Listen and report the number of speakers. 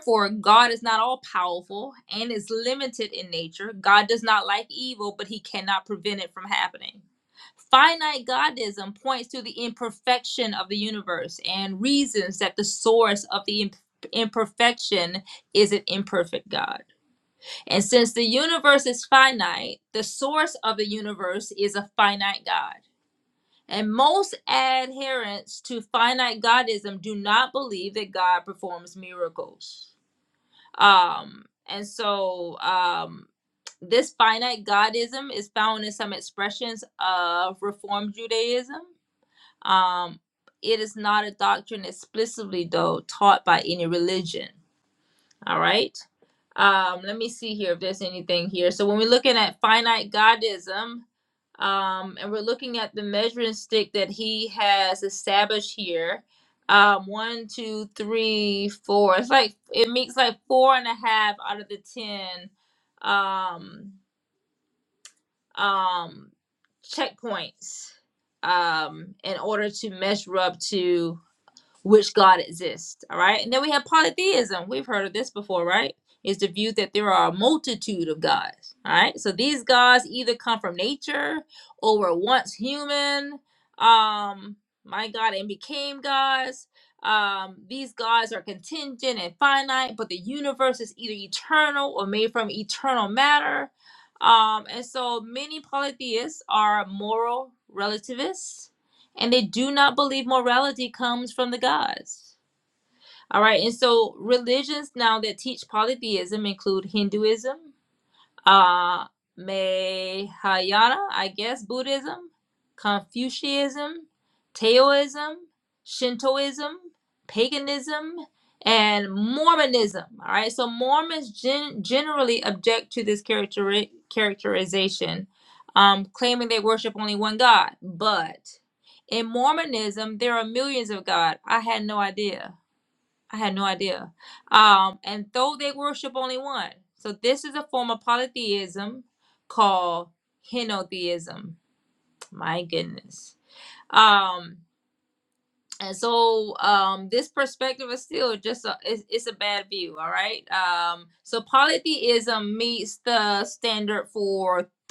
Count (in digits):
1